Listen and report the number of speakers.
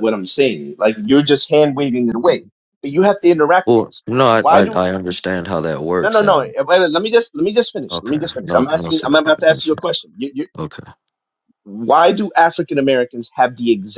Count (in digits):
2